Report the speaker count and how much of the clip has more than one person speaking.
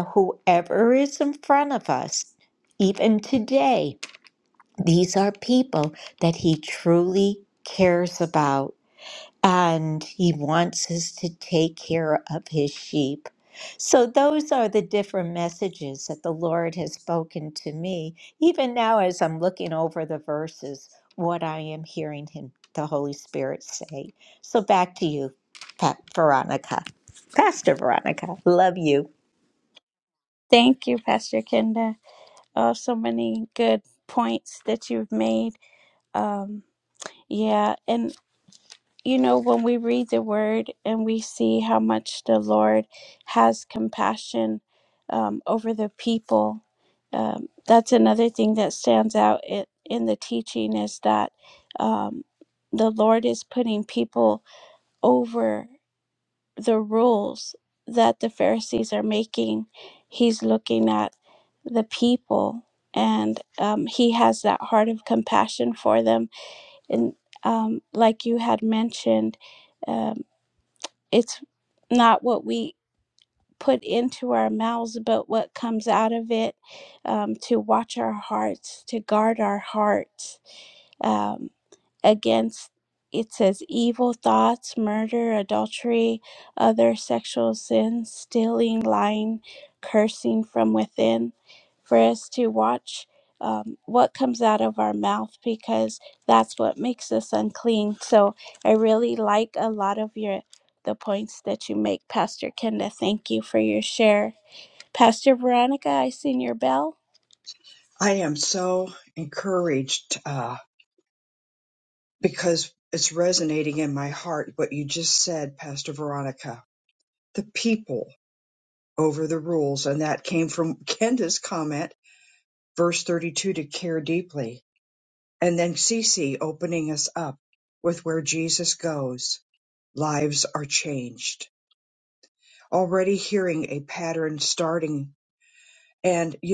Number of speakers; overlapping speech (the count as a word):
three, no overlap